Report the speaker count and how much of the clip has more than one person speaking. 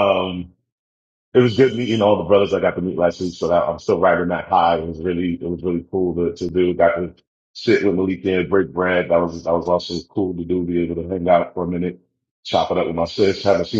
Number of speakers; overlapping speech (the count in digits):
1, no overlap